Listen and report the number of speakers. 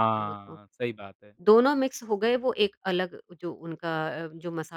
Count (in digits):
2